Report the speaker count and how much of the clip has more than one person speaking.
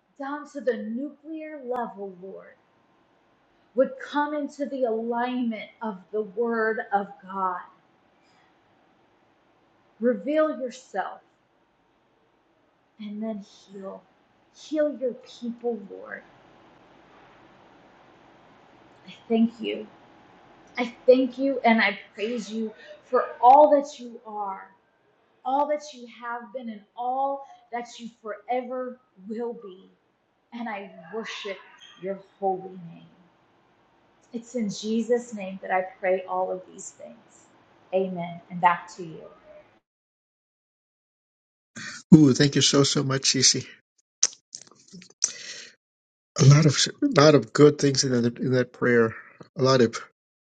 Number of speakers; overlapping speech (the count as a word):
two, no overlap